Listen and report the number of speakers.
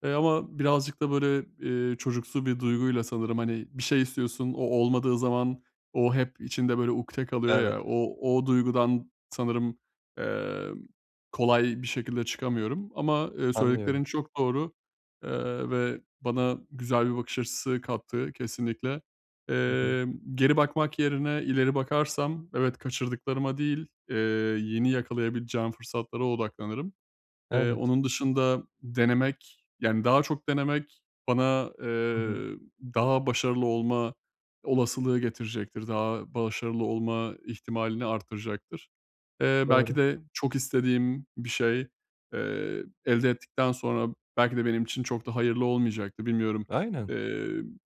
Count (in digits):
2